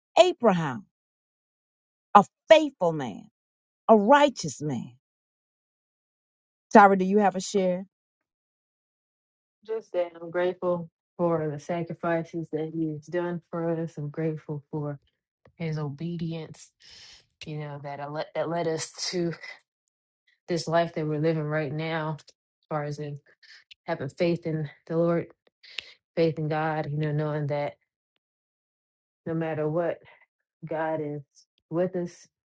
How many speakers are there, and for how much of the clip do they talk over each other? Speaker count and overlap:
2, no overlap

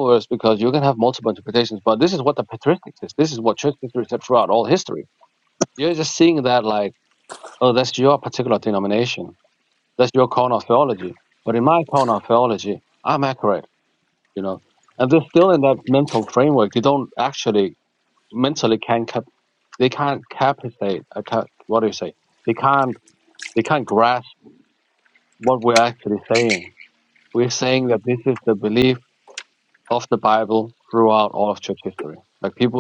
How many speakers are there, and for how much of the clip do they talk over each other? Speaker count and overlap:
1, no overlap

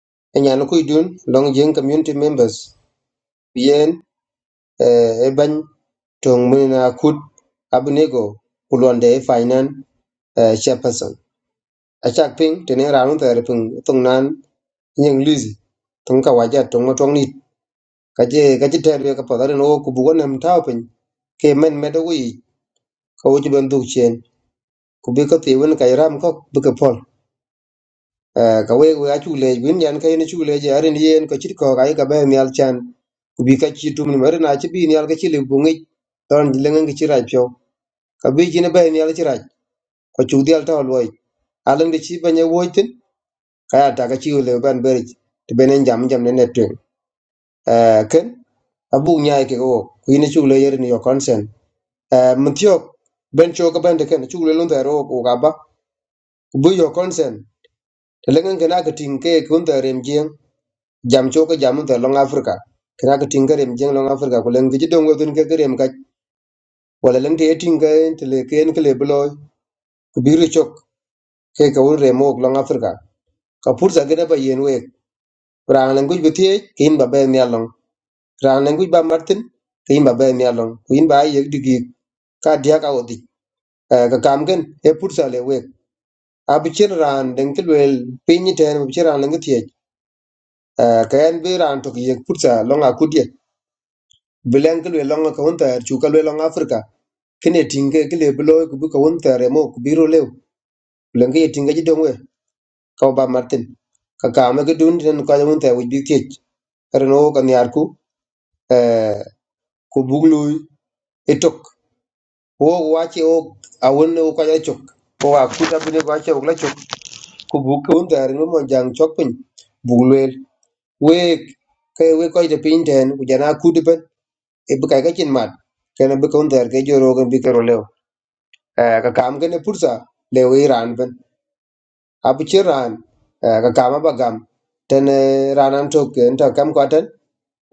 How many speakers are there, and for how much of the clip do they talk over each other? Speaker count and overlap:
1, no overlap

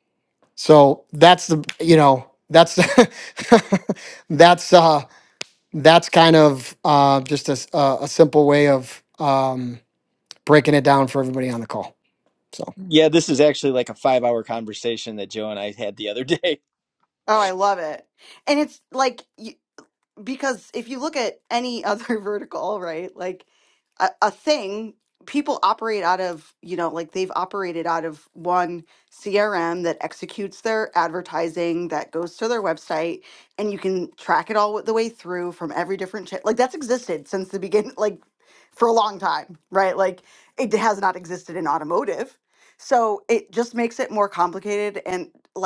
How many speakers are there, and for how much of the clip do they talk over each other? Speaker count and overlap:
3, no overlap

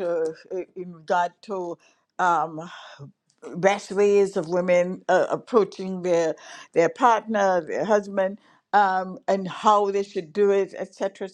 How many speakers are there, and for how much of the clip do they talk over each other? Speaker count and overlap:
1, no overlap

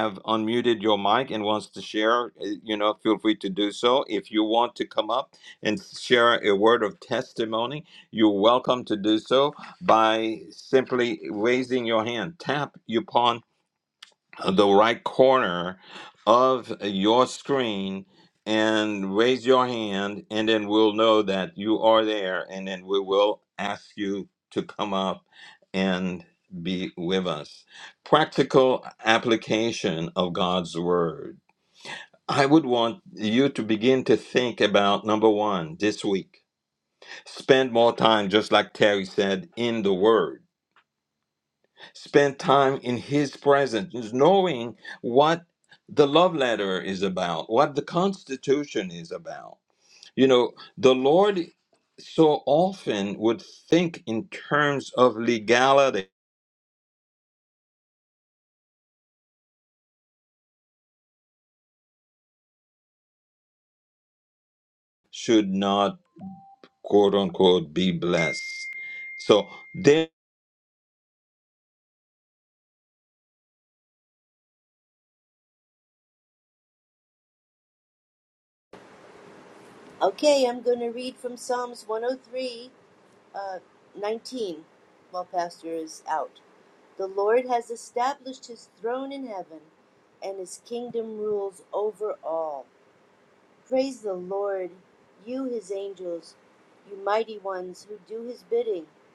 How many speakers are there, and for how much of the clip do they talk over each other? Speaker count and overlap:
2, no overlap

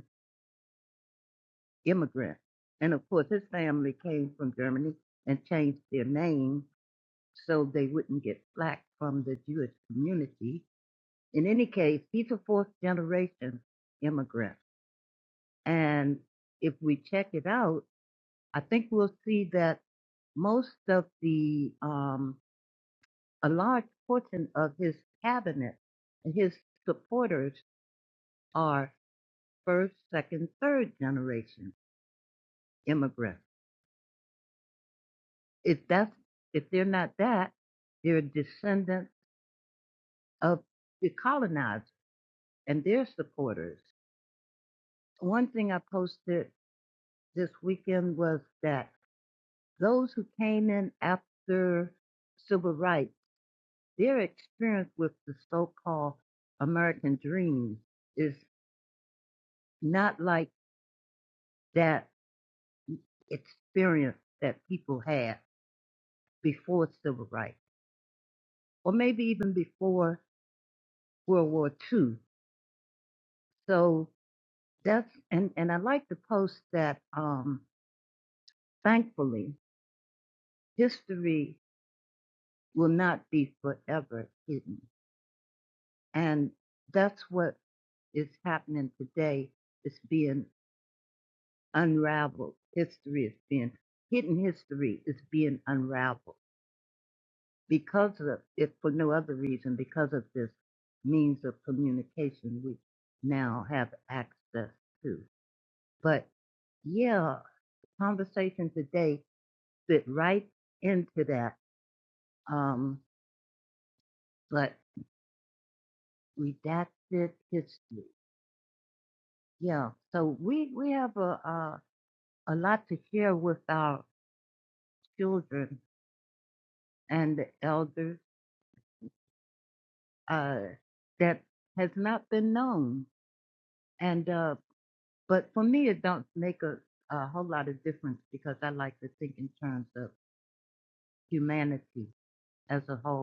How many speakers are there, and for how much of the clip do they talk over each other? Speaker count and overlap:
1, no overlap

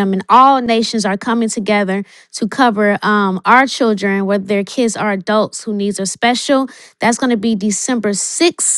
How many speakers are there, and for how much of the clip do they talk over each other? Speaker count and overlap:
1, no overlap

